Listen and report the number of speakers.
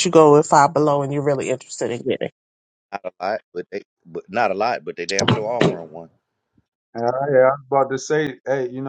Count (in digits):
3